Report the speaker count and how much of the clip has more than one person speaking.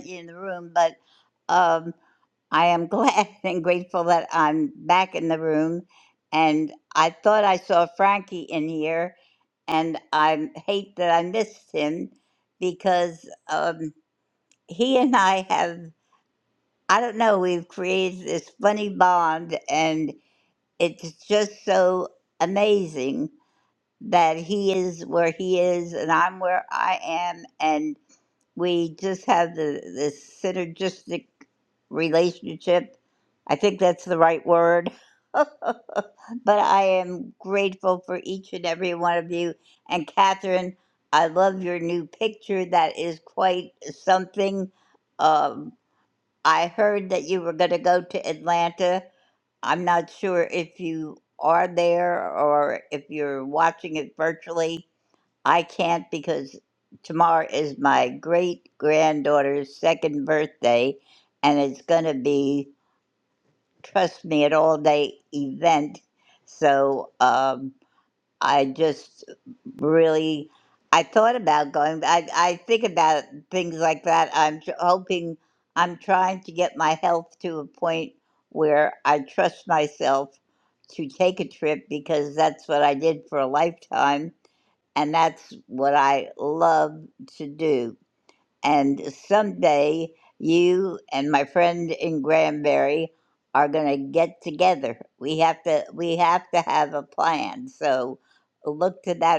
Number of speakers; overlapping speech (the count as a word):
one, no overlap